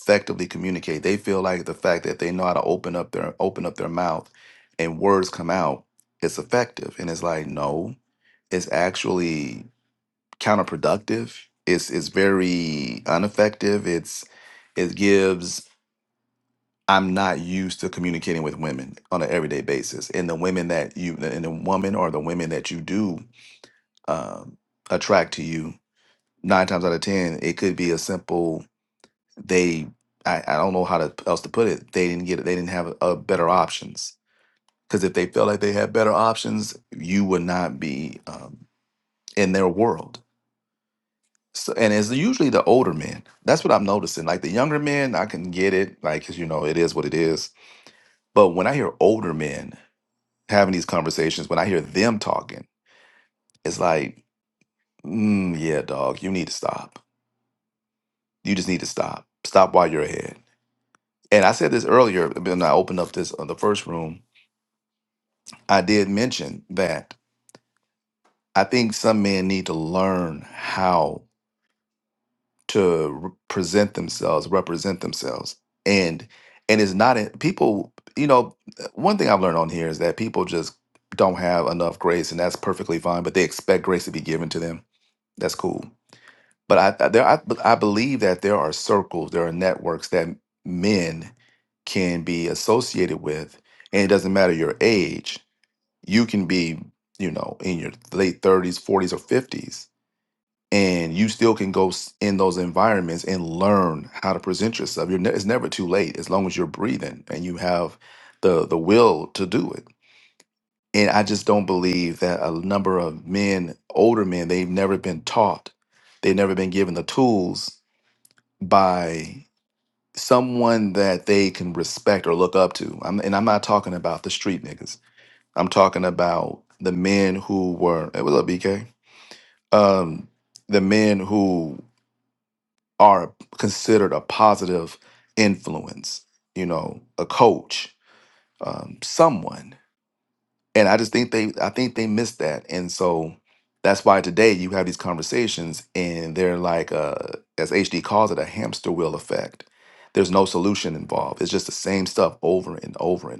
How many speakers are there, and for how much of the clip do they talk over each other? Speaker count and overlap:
one, no overlap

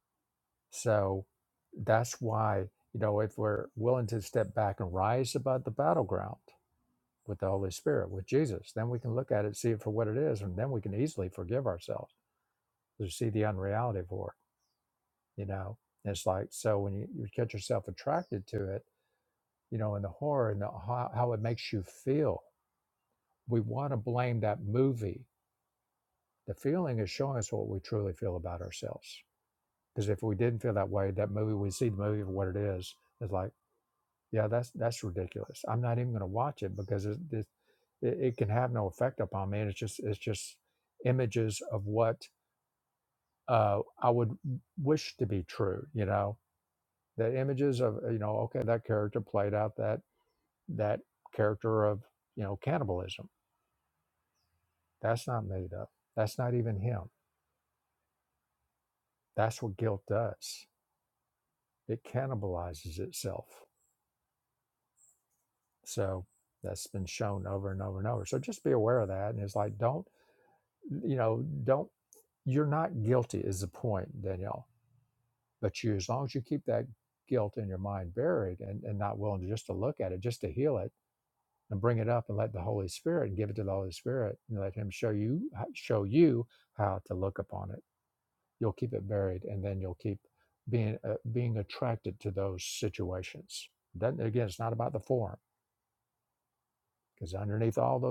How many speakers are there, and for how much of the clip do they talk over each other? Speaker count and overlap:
one, no overlap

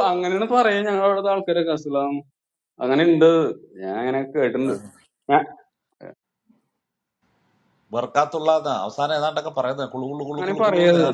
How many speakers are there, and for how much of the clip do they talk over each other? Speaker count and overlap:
two, about 8%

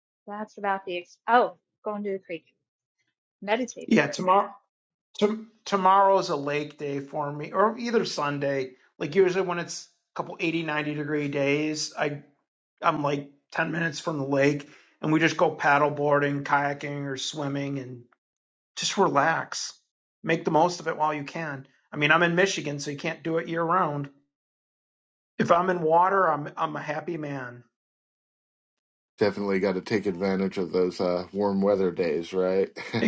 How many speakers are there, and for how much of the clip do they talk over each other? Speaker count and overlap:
three, about 2%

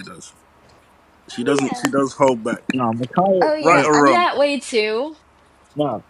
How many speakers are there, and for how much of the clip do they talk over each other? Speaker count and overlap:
three, about 24%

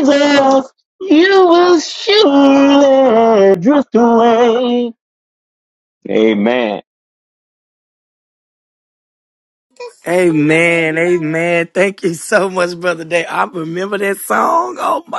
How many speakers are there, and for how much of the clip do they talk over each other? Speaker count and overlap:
two, no overlap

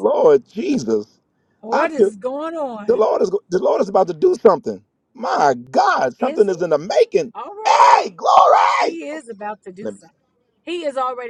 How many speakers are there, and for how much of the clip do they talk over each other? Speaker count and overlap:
two, about 13%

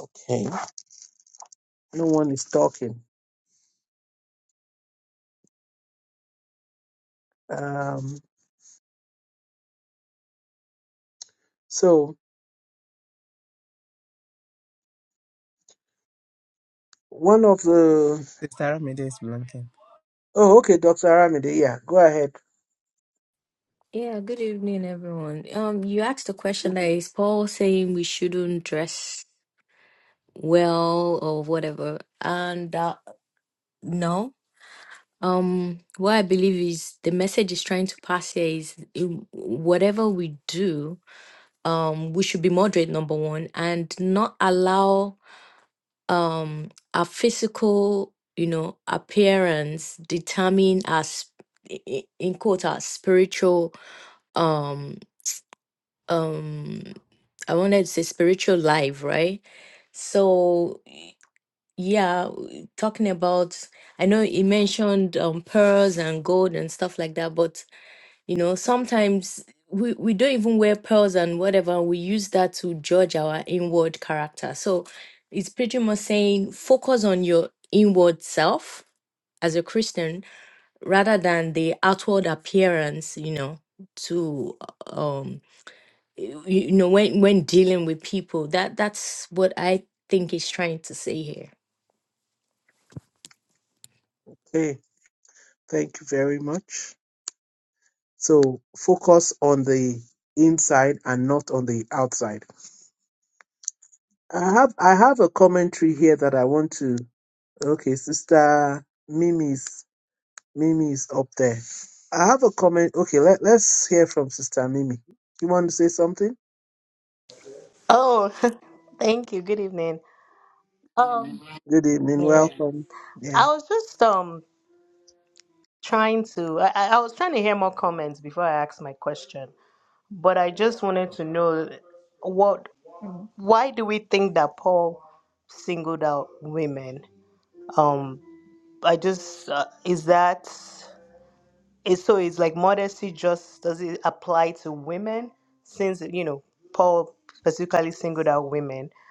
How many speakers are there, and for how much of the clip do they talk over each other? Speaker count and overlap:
four, under 1%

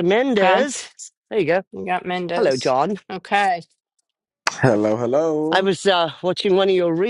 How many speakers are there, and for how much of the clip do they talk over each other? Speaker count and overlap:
three, about 10%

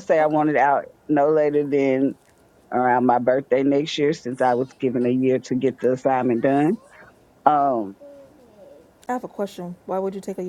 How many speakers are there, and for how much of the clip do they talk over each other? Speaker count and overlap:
two, about 3%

